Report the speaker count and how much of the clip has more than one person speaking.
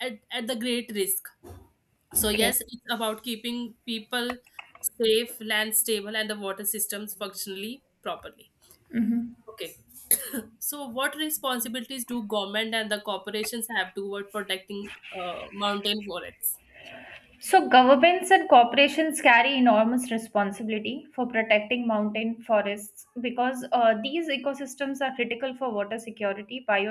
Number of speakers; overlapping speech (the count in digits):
2, about 1%